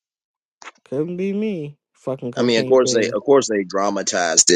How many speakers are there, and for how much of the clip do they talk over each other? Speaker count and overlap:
two, about 17%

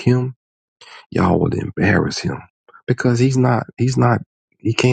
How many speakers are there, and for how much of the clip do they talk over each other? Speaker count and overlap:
one, no overlap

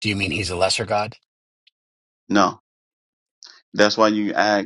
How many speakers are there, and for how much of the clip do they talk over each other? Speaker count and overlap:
two, no overlap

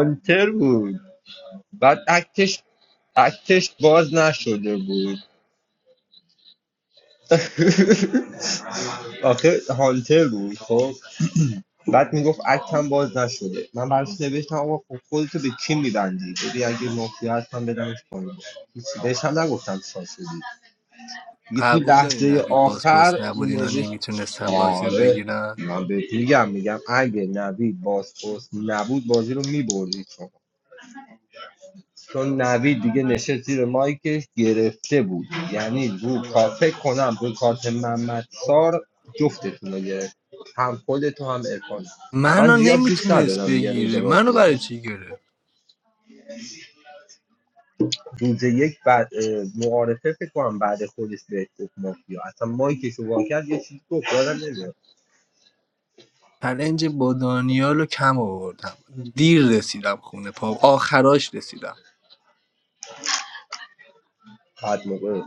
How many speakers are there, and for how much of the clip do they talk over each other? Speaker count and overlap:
two, about 8%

